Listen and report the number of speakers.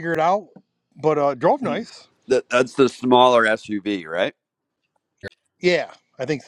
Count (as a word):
two